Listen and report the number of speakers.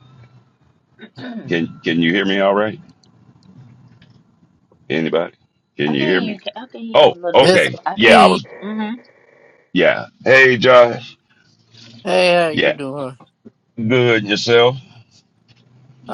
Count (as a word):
three